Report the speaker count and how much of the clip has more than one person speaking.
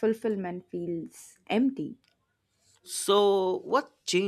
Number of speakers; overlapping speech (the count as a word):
two, no overlap